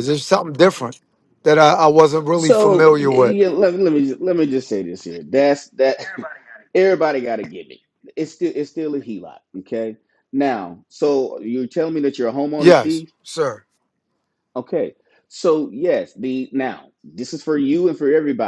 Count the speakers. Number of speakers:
2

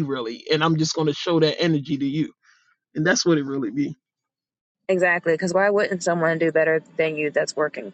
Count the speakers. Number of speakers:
2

